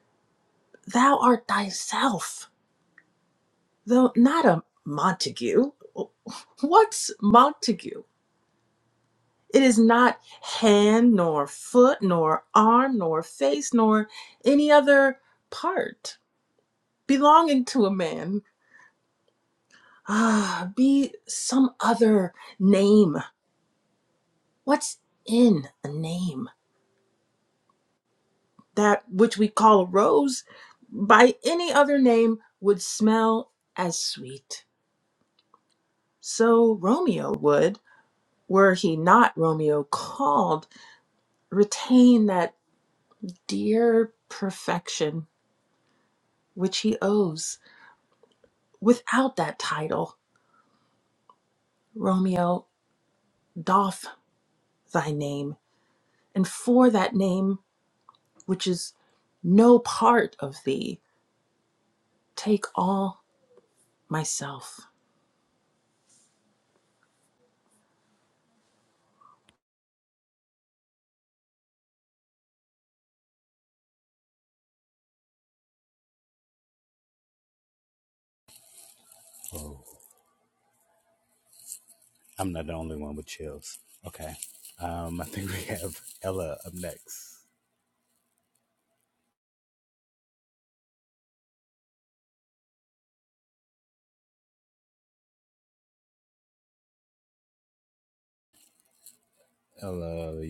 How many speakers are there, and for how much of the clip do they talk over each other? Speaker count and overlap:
two, no overlap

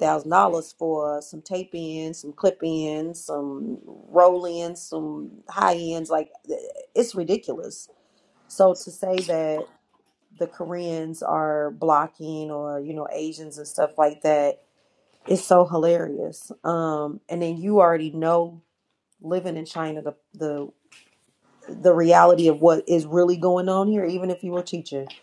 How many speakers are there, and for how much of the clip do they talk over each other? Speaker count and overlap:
one, no overlap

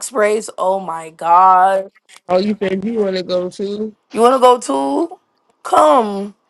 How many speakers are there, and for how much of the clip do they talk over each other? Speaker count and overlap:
two, no overlap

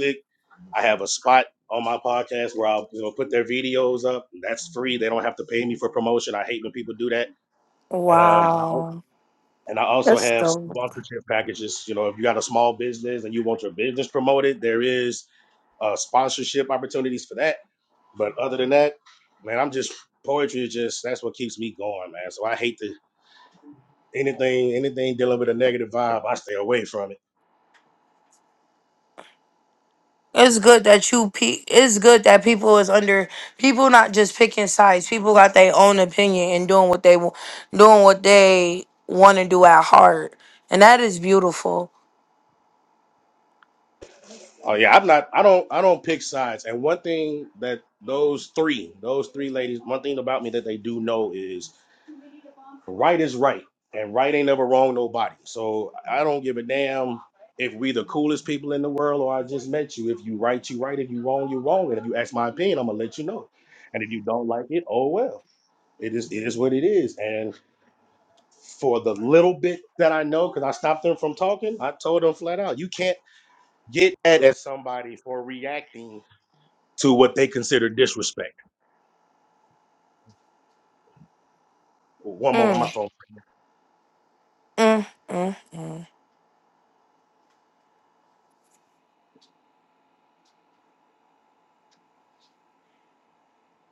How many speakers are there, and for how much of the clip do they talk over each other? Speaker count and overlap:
two, about 2%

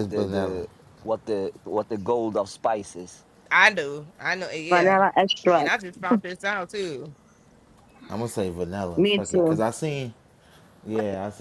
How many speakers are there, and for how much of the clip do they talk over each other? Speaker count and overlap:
four, about 15%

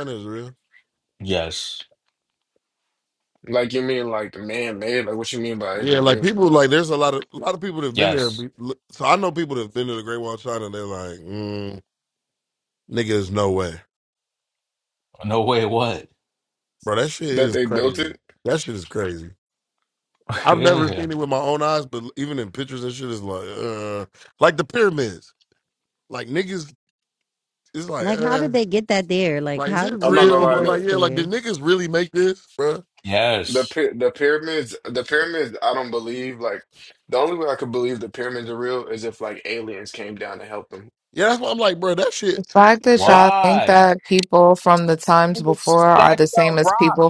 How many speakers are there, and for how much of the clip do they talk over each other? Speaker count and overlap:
five, about 16%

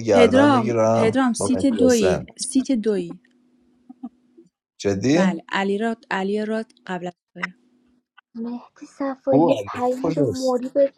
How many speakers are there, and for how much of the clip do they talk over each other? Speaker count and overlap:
three, about 25%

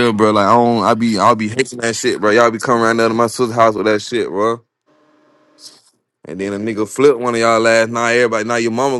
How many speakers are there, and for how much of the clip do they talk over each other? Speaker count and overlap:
one, no overlap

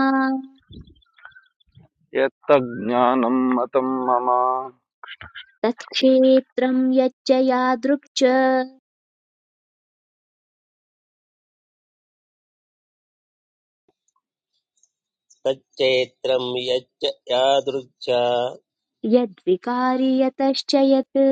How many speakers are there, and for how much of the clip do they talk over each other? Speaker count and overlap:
three, no overlap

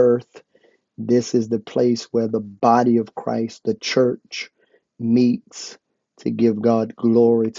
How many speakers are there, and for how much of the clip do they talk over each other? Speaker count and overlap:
one, no overlap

